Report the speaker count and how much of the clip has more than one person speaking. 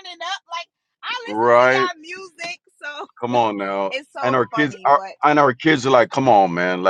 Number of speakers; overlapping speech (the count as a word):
two, about 22%